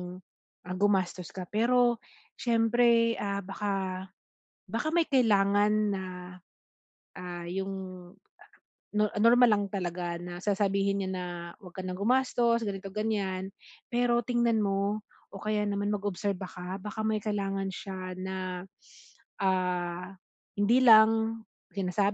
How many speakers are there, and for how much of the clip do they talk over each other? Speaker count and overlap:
1, no overlap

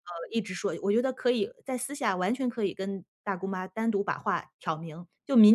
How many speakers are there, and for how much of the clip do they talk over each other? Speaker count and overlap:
1, no overlap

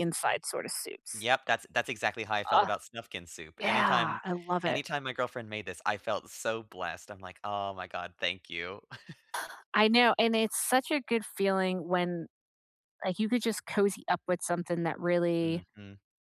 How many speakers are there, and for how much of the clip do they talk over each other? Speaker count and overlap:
2, about 7%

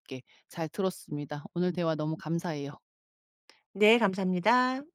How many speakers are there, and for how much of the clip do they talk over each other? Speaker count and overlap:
2, no overlap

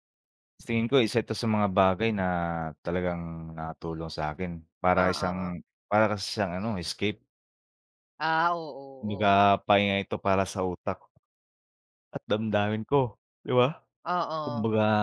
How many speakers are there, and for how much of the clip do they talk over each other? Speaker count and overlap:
2, about 8%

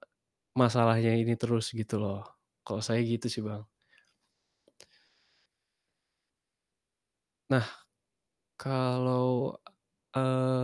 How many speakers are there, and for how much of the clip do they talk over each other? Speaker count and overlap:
1, no overlap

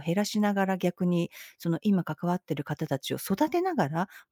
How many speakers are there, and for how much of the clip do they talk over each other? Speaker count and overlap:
1, no overlap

